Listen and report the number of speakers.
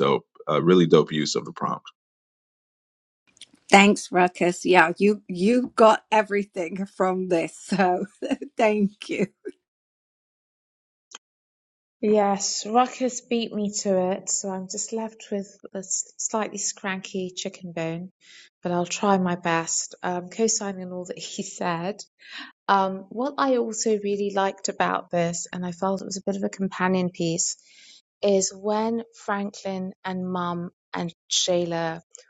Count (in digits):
3